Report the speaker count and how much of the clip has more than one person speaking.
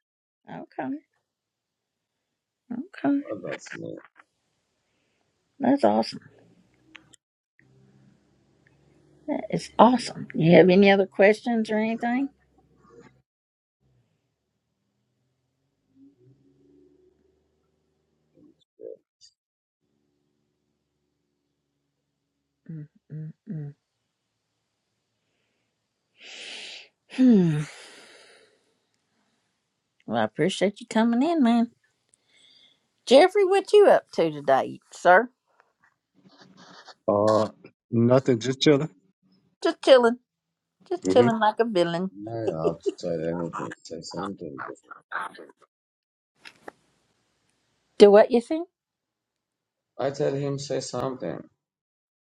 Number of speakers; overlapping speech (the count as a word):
three, about 1%